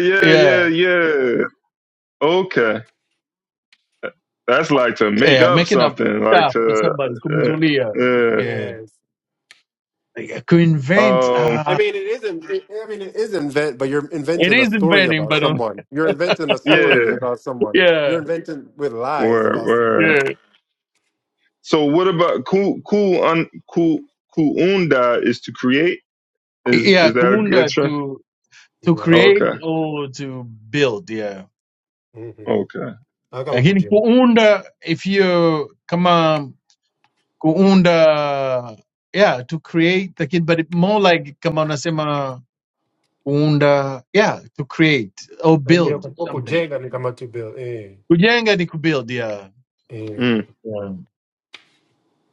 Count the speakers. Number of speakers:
3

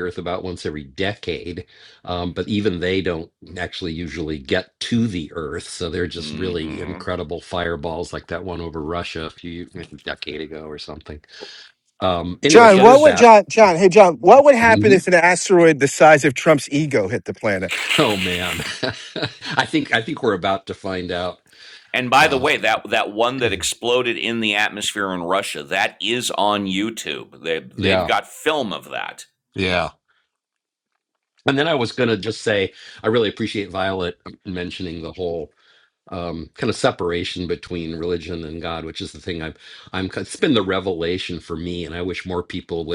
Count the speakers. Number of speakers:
3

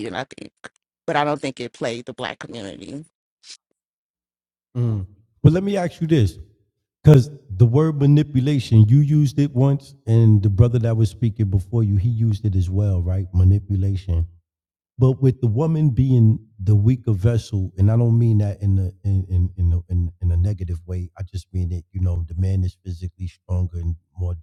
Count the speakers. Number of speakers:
2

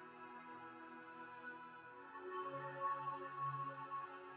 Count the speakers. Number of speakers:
0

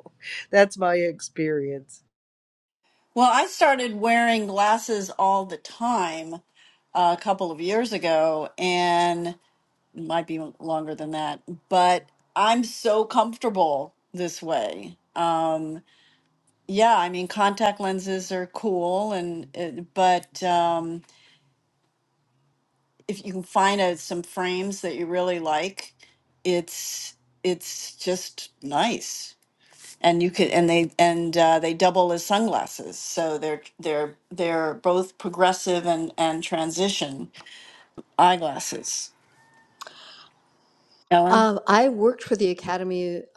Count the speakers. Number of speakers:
3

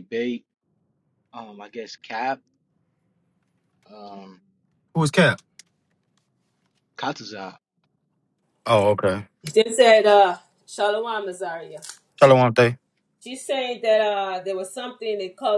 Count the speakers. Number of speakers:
3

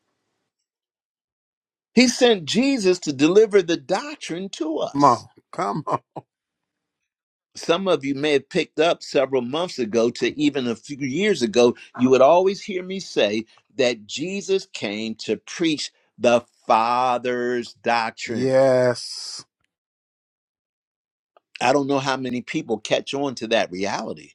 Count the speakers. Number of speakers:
2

